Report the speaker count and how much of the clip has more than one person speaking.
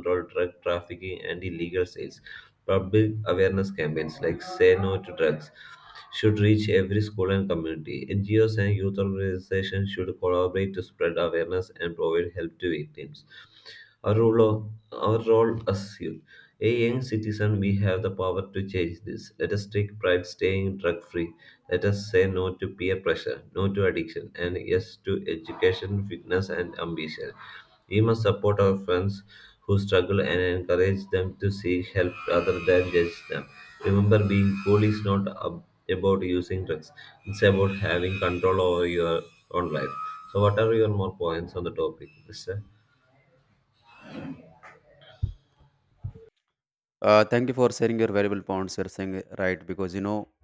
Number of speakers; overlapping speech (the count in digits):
2, no overlap